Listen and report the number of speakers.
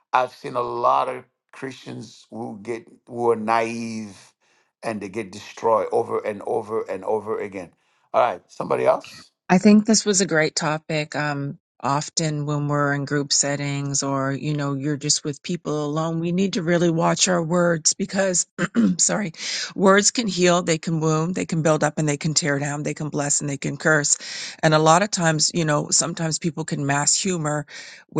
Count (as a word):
two